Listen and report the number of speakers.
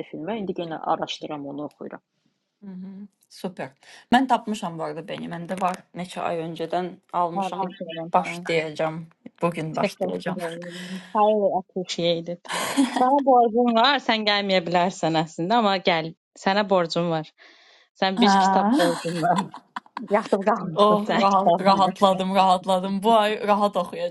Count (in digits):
3